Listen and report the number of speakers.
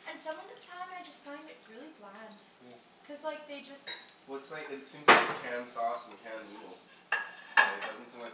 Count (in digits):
2